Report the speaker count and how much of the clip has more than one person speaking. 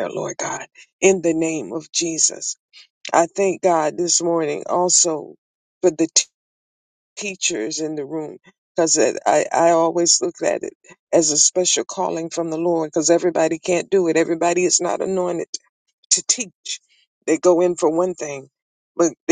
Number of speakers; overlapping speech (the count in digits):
1, no overlap